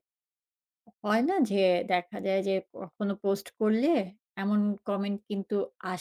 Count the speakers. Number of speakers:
1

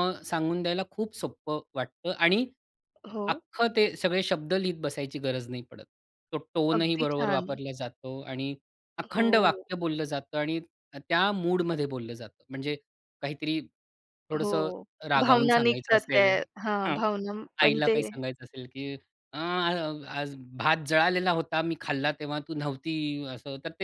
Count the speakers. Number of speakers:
2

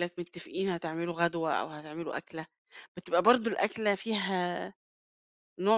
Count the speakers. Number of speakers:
1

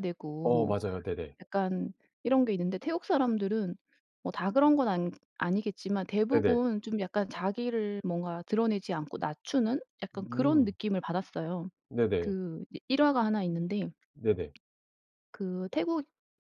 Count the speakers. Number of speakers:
2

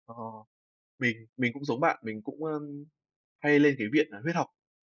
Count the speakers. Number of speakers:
1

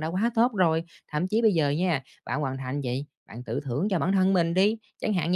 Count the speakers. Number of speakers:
1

